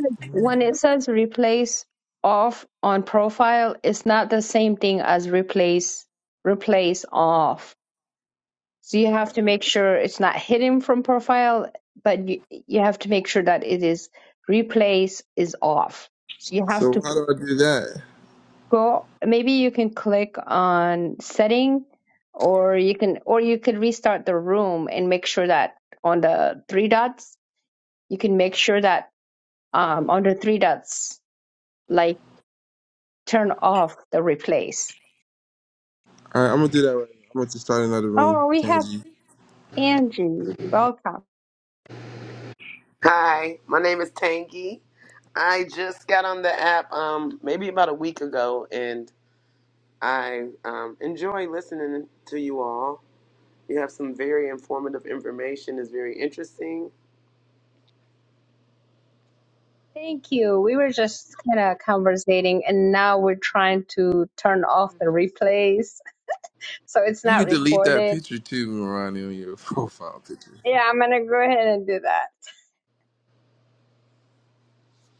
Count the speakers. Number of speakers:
three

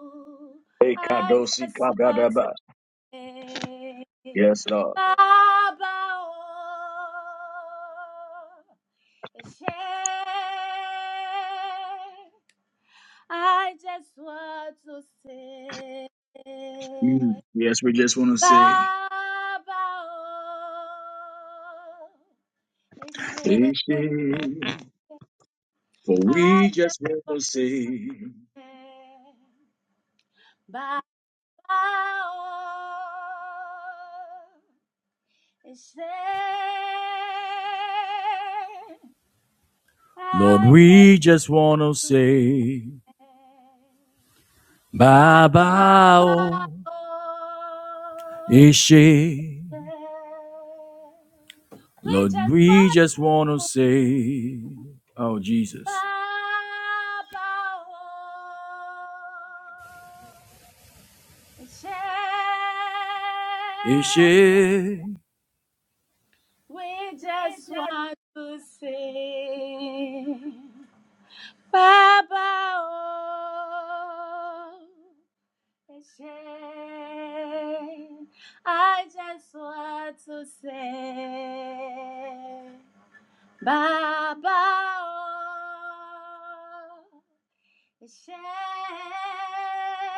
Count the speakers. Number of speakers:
two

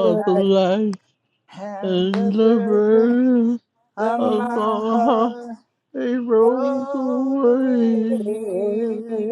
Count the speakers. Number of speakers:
three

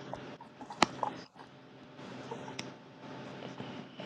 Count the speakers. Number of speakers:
zero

